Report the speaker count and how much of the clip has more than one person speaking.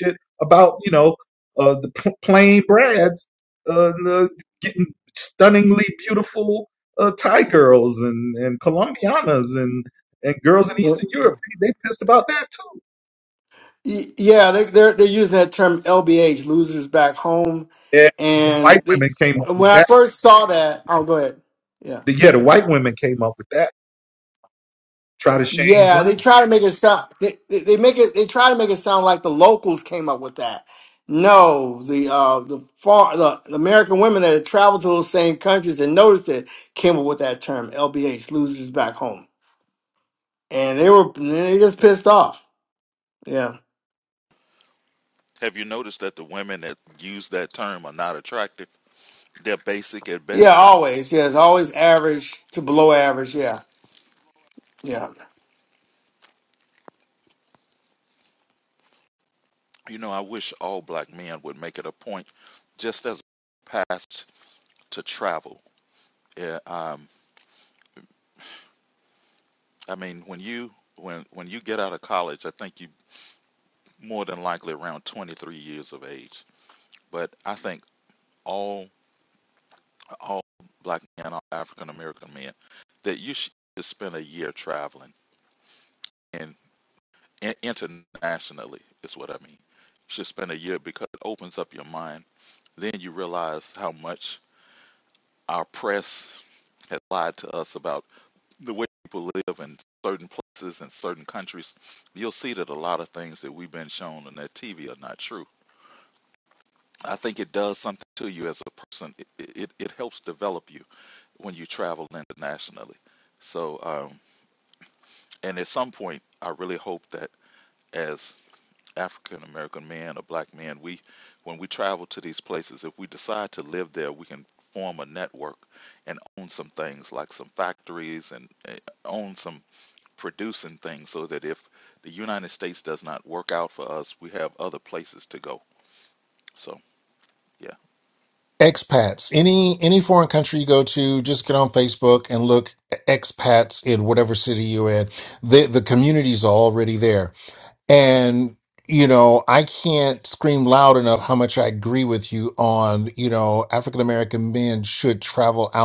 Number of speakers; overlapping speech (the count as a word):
four, about 1%